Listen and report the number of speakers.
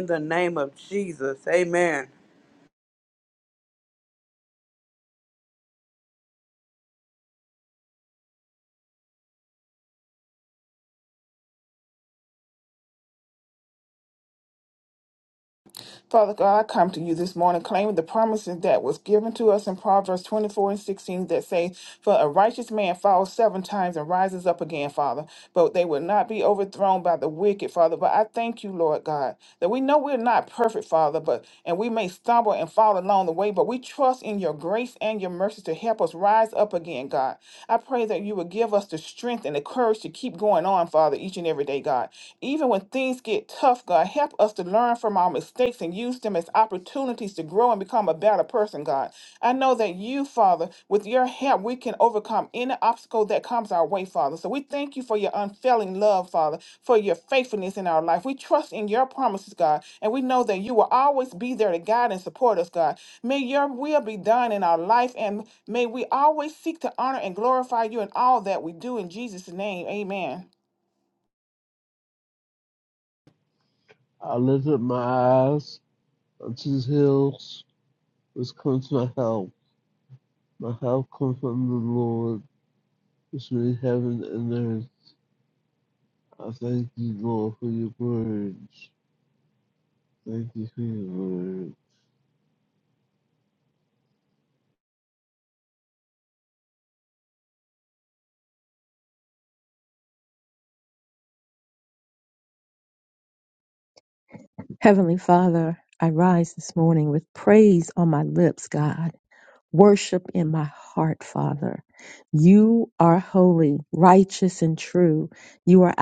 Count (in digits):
4